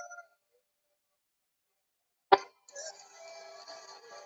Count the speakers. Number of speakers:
zero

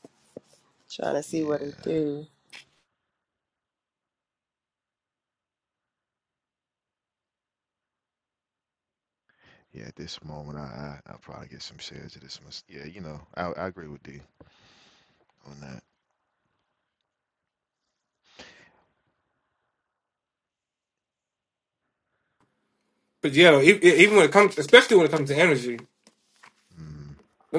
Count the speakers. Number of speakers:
three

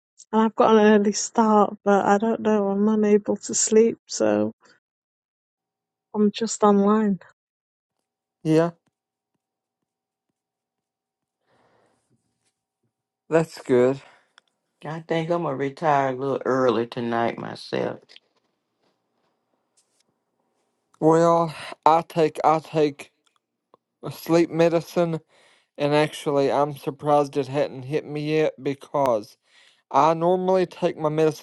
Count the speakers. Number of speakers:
three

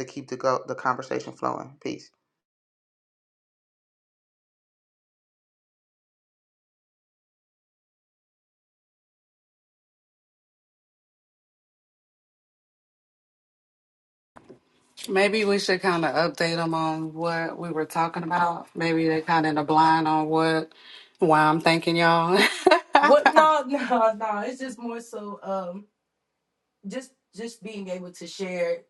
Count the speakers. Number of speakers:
three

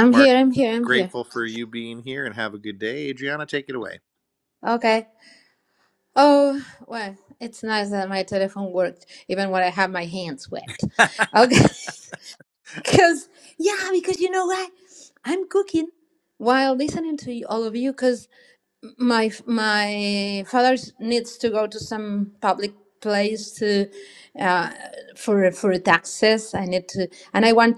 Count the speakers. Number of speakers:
two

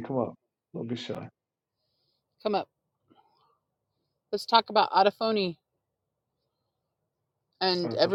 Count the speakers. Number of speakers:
two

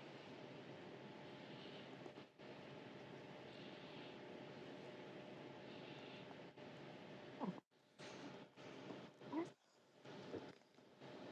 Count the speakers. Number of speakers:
zero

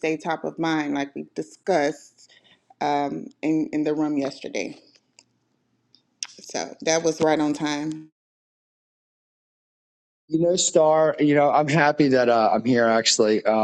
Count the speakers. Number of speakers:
two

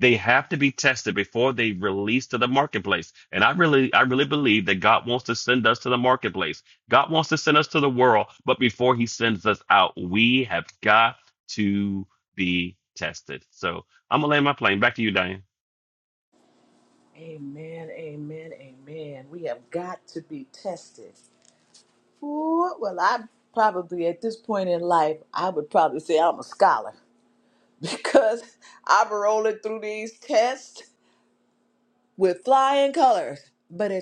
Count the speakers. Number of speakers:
two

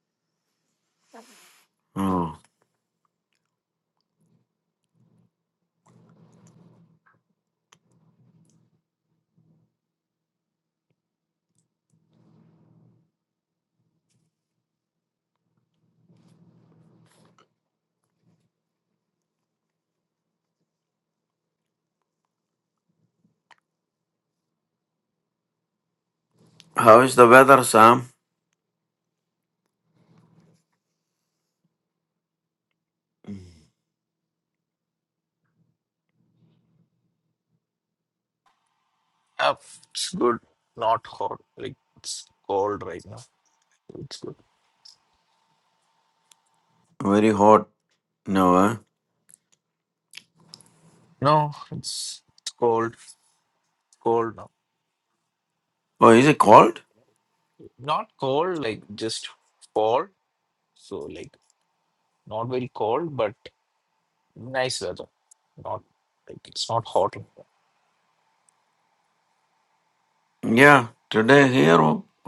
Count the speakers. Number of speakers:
two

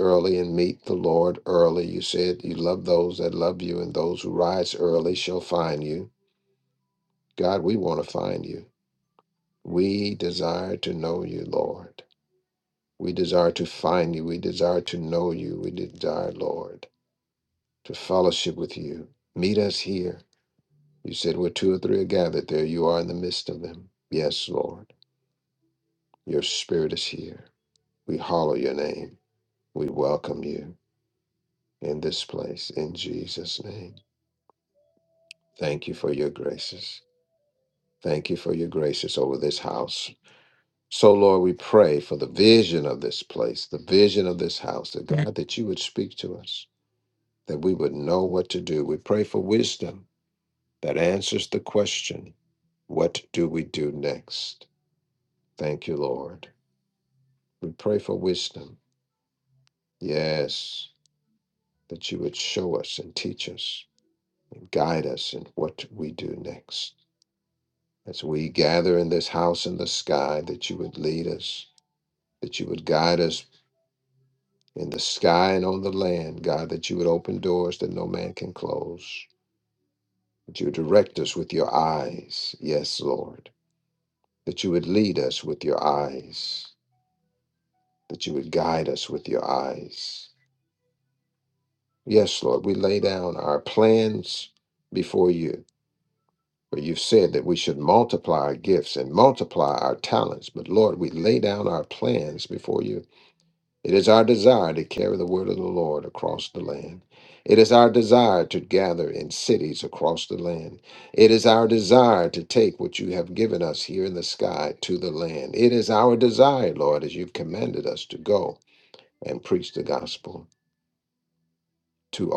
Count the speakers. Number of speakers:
one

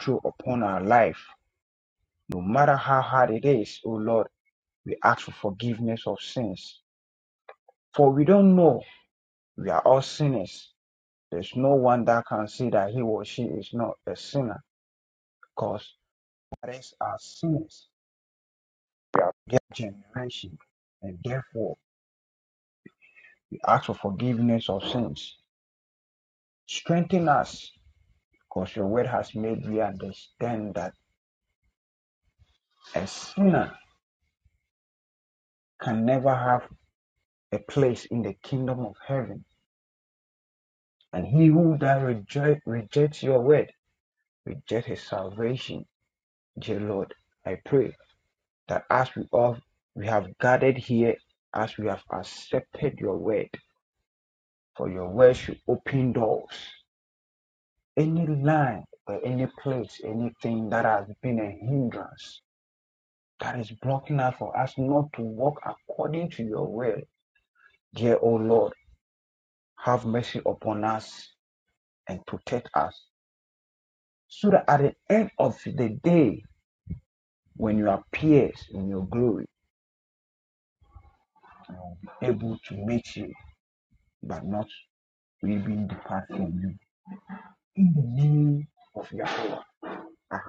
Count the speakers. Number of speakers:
one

